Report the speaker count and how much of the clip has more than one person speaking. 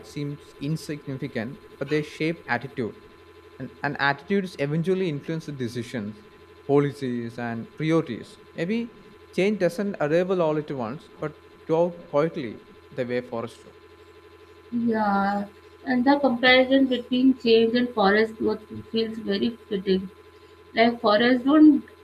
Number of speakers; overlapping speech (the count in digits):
2, no overlap